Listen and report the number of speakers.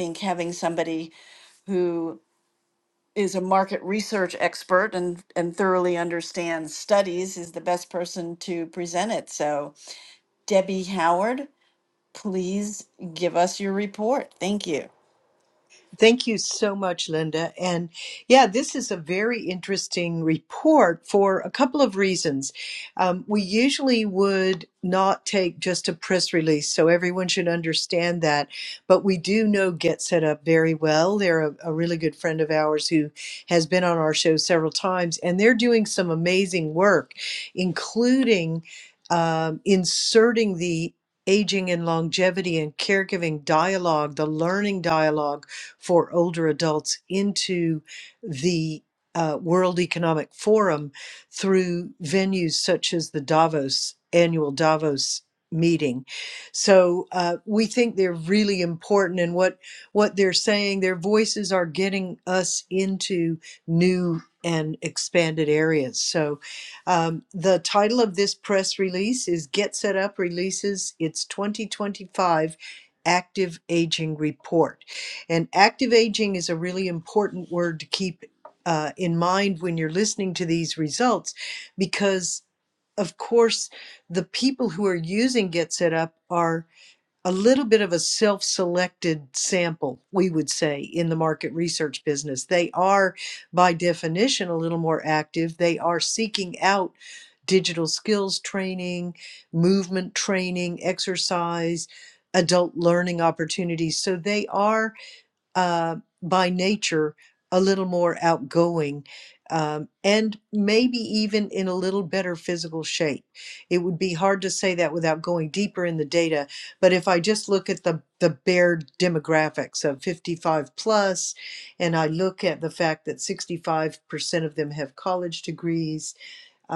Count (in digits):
2